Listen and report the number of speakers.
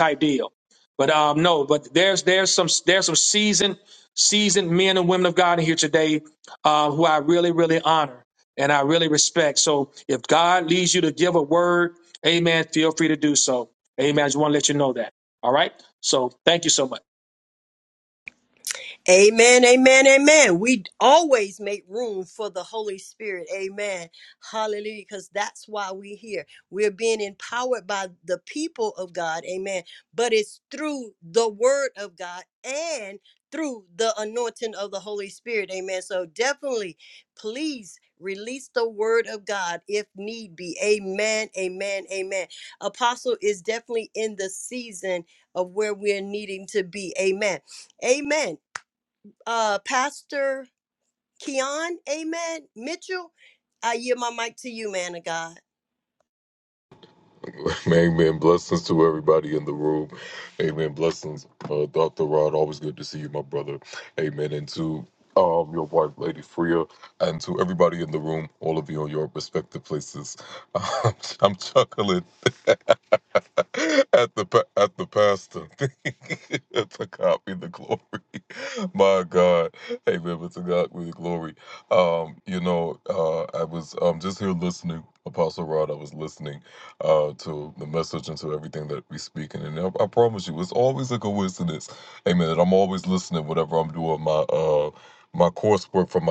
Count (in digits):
3